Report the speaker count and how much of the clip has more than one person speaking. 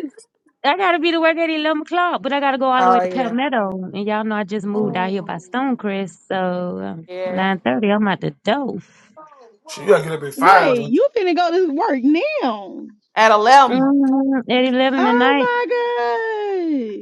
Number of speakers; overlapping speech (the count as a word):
four, about 13%